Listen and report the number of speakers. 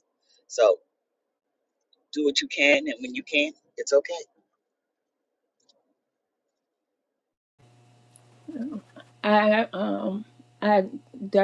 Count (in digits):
2